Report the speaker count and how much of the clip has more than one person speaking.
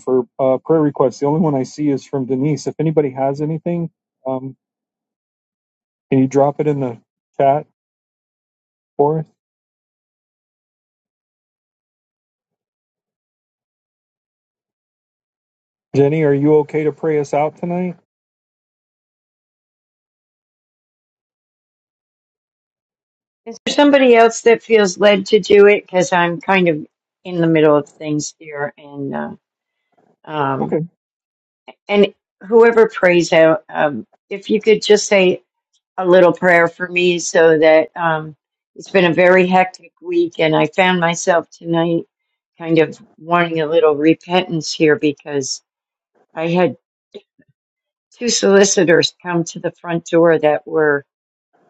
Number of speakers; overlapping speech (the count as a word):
two, under 1%